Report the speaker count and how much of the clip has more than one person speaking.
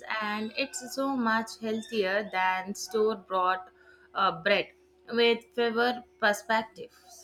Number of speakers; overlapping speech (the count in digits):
1, no overlap